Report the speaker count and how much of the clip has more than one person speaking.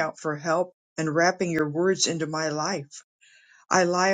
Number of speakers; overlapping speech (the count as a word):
one, no overlap